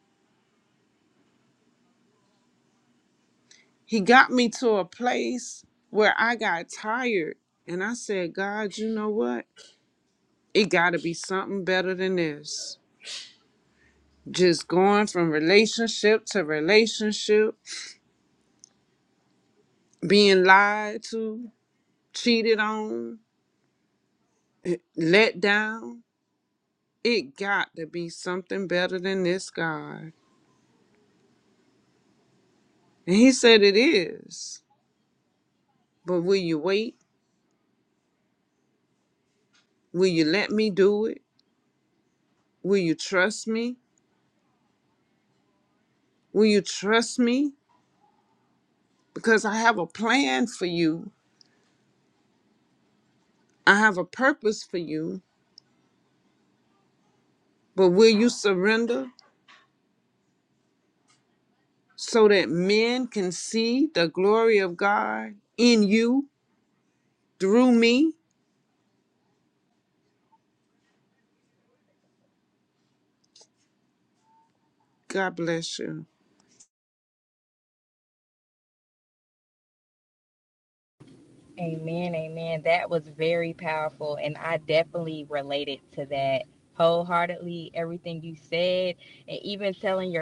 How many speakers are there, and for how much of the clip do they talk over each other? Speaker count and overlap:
two, no overlap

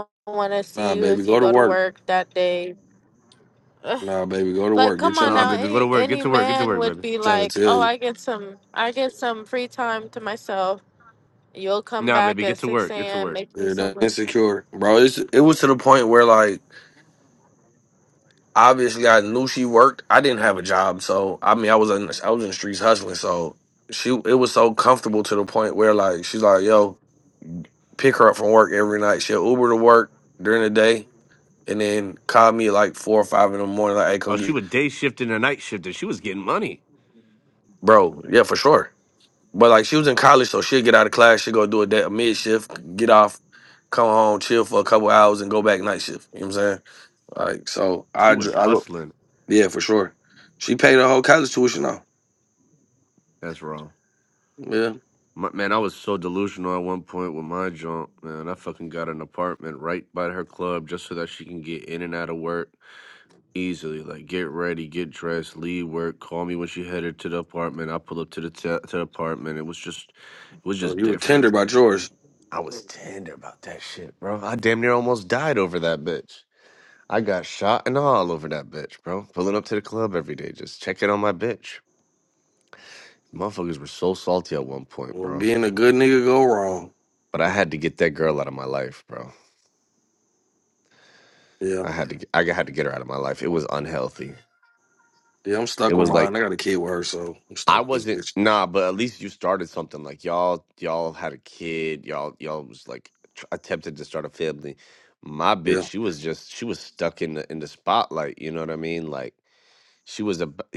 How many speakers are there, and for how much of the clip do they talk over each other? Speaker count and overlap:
three, about 8%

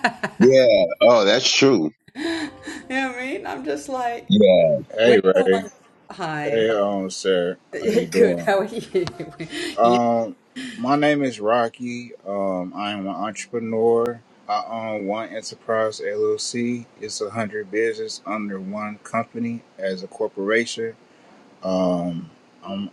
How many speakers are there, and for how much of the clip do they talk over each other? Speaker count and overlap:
three, about 9%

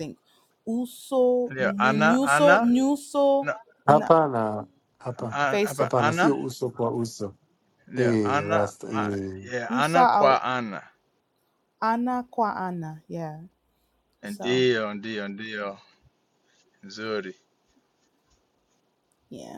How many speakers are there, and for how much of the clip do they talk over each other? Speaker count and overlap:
three, about 24%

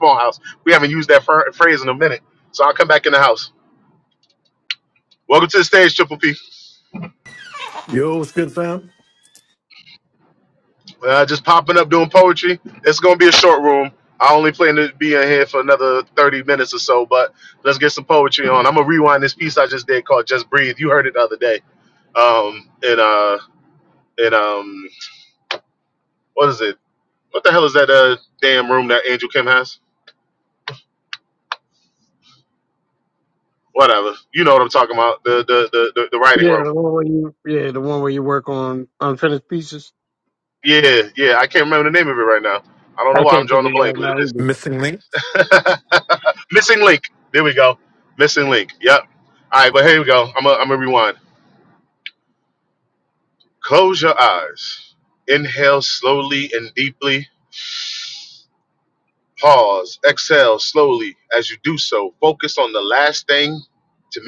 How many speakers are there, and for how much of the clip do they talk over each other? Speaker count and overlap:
three, about 2%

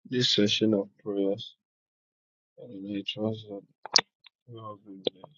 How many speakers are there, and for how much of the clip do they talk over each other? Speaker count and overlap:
one, no overlap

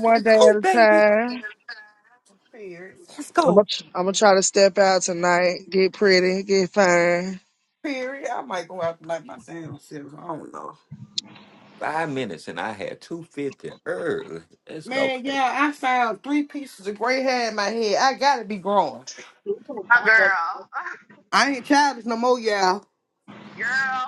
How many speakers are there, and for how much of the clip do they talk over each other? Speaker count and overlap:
four, about 7%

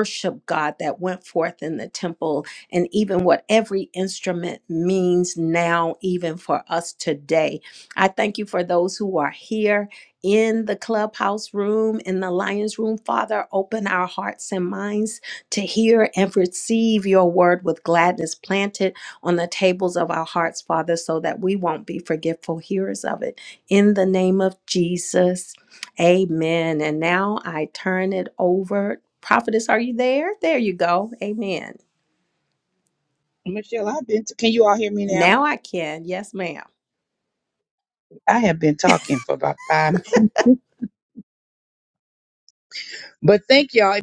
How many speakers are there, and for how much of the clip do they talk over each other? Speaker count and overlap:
two, about 1%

